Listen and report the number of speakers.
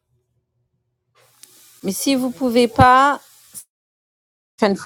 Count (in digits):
1